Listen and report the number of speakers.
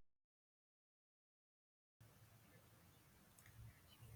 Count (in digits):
0